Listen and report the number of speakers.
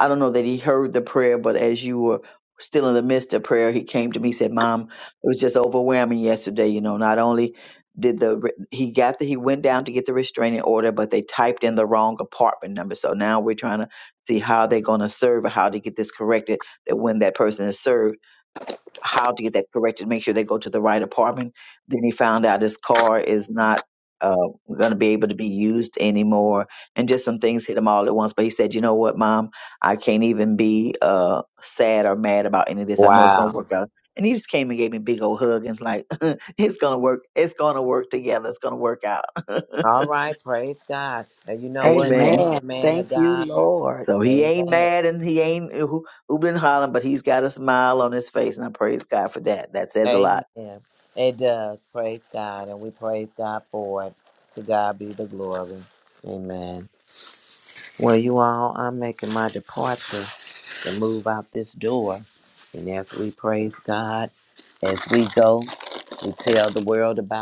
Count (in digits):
3